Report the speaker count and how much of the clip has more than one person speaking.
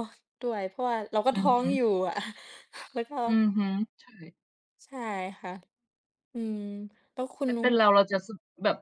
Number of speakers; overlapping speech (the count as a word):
two, about 6%